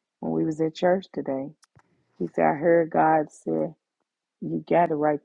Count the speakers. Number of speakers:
one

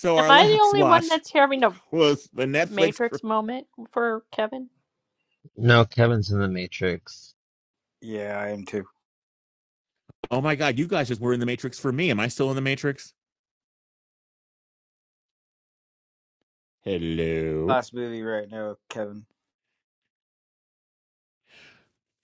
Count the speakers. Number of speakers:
four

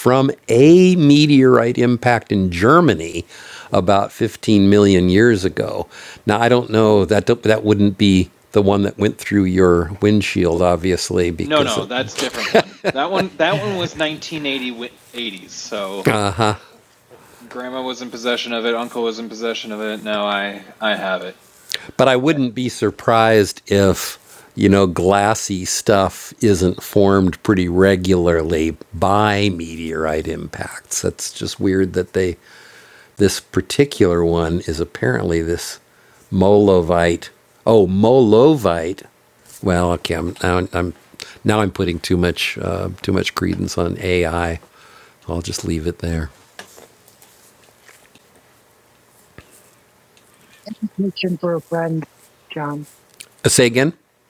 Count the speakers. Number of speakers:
three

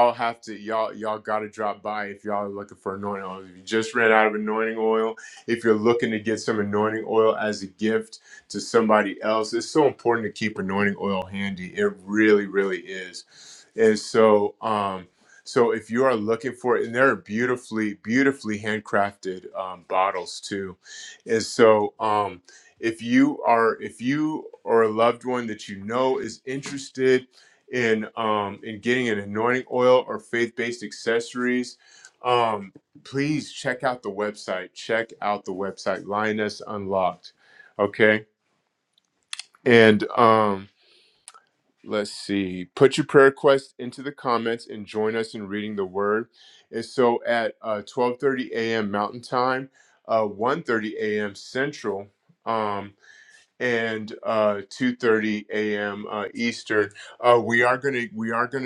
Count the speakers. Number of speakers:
one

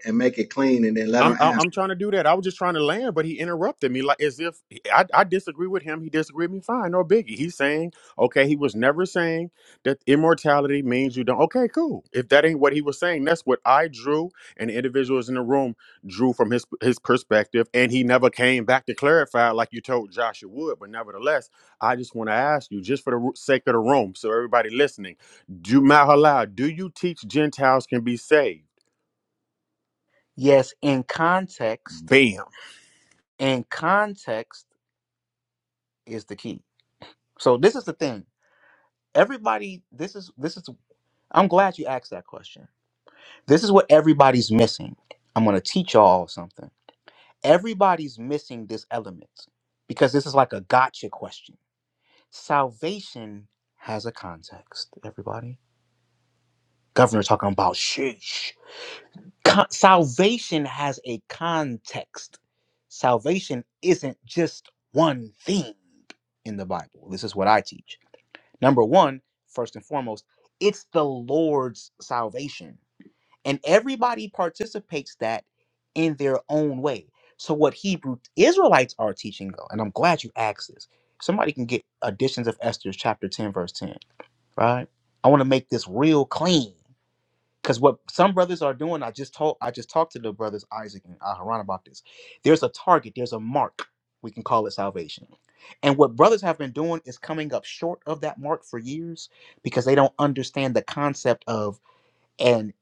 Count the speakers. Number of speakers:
three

